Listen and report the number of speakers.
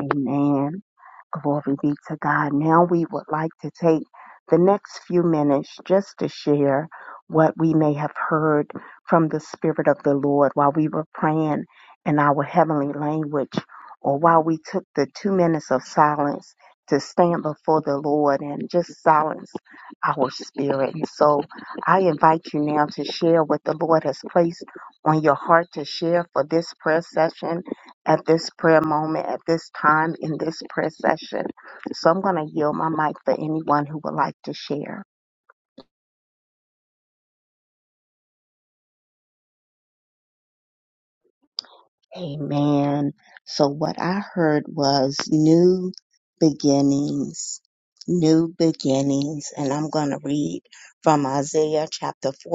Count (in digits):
1